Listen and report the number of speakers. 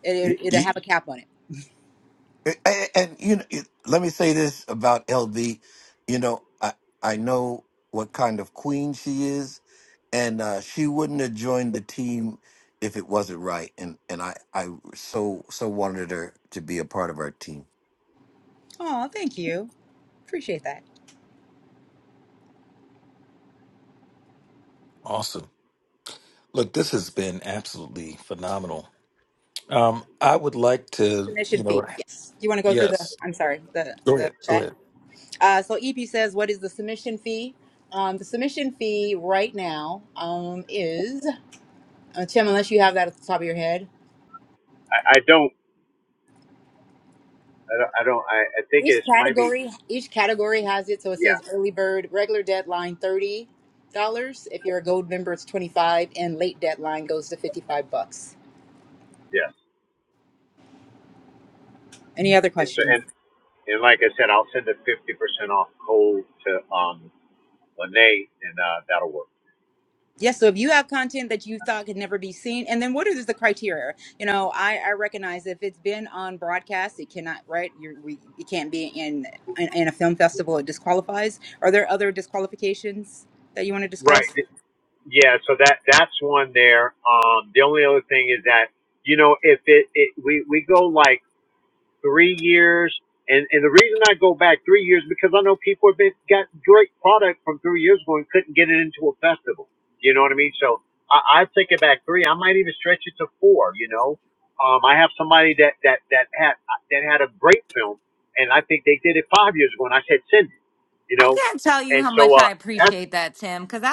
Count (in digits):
5